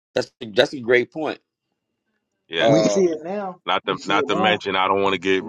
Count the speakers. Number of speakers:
3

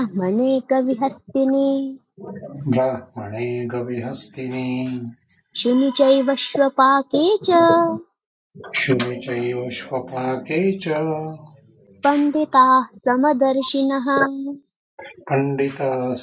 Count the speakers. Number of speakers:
2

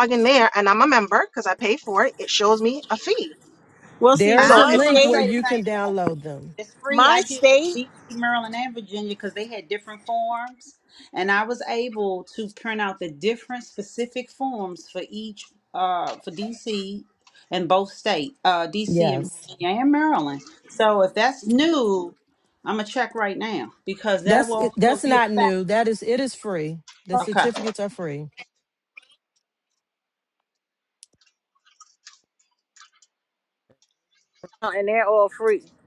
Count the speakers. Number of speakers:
4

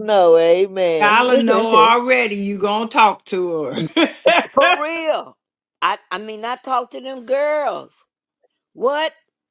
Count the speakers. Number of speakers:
3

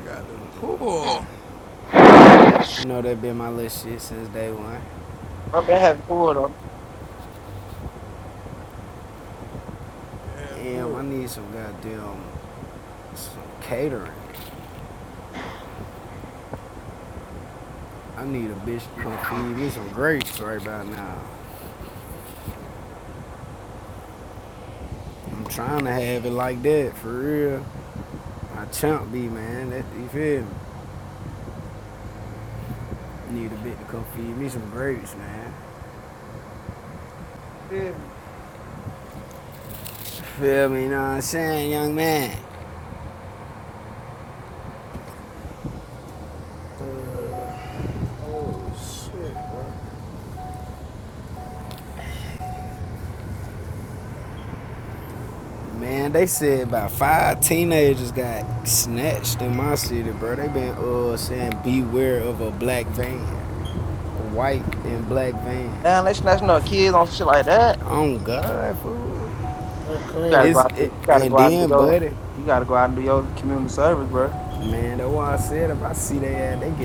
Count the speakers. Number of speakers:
4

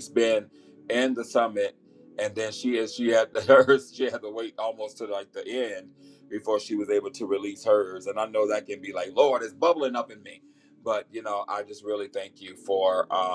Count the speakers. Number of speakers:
1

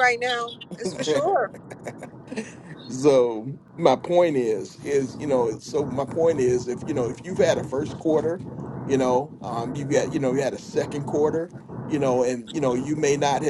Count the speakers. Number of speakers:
2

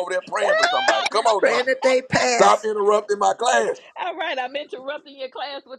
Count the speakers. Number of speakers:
3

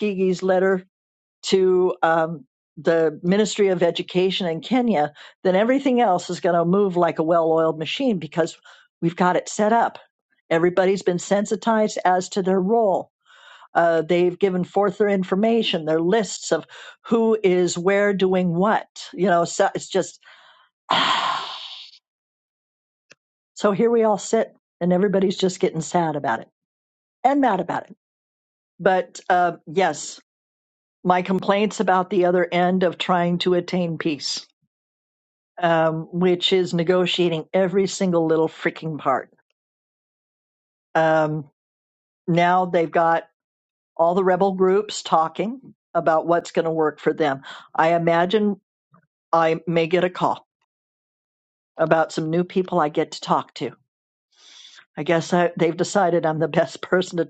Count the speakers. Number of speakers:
1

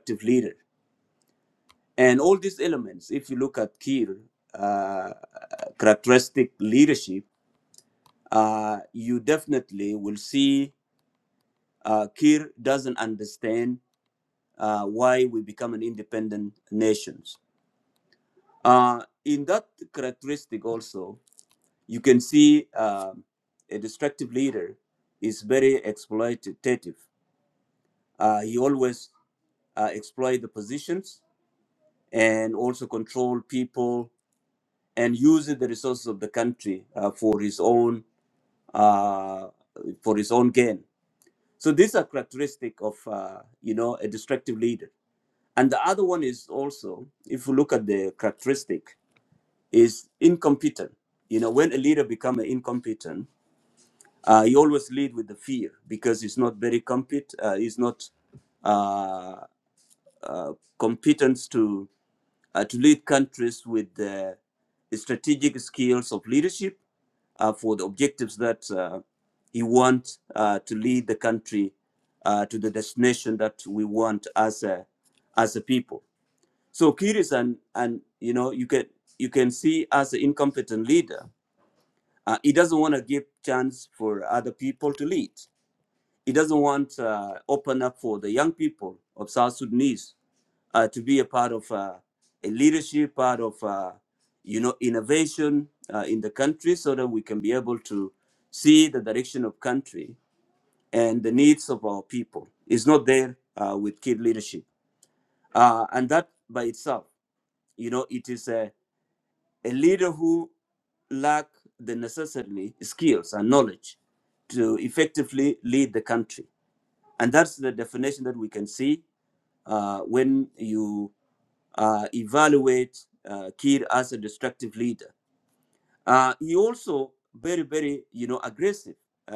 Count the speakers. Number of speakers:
1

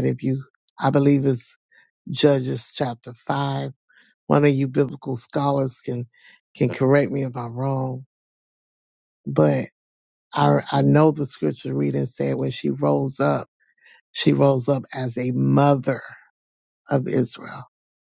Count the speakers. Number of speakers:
1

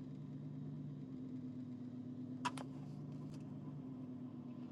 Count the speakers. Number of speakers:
0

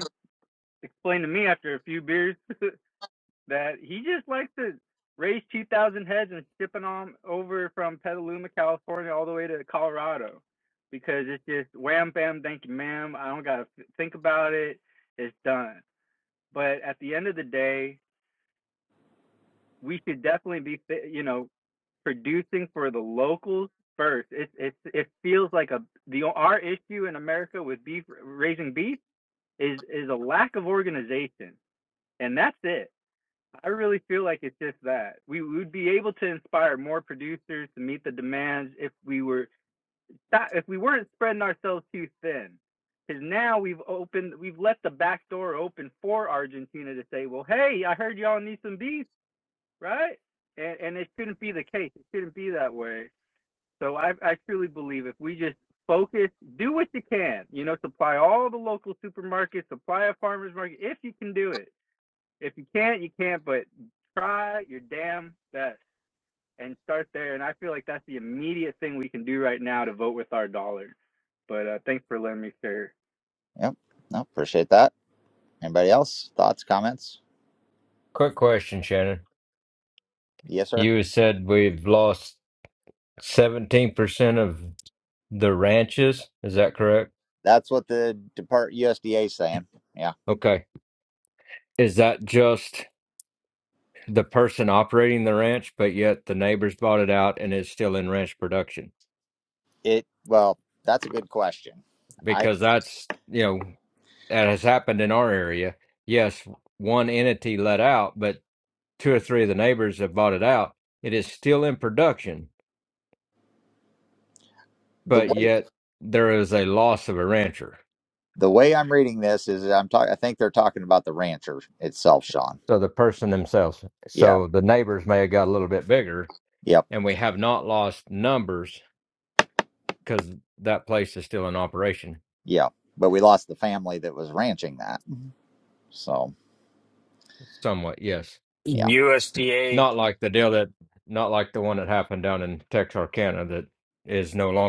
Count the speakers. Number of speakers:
4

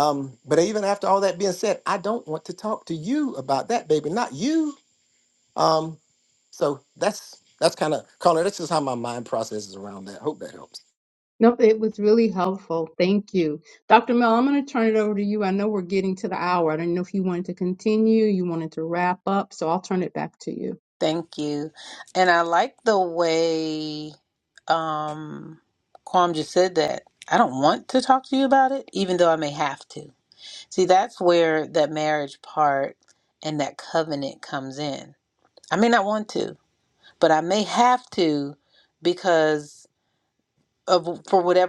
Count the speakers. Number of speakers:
3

